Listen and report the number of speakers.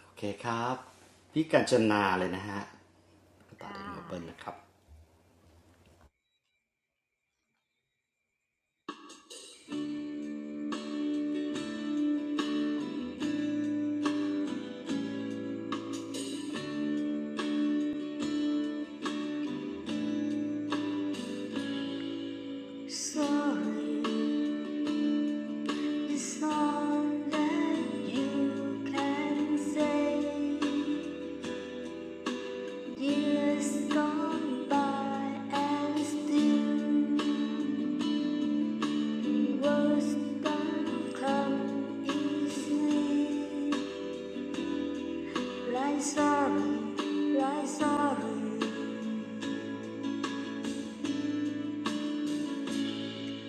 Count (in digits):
2